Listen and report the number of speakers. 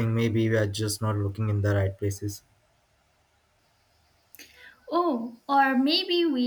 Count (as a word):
two